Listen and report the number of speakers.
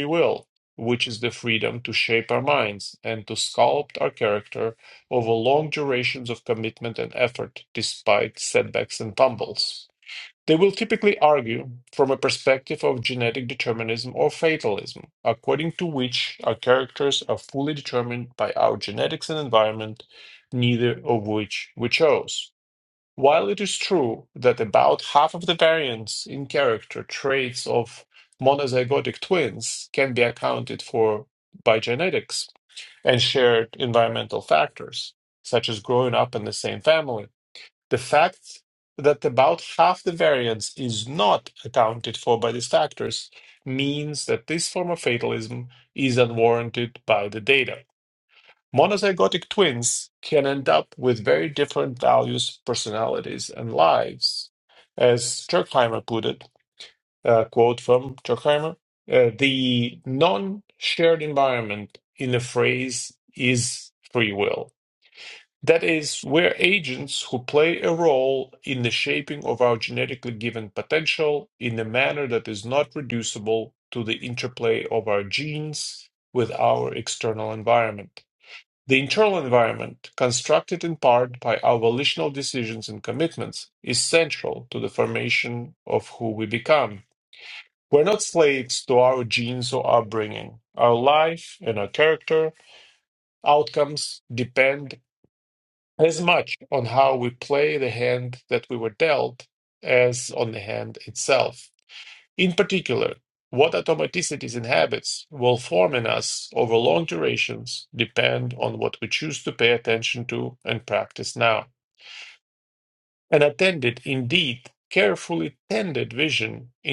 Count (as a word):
one